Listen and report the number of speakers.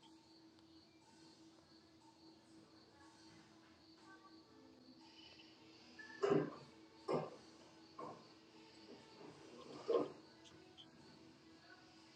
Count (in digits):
0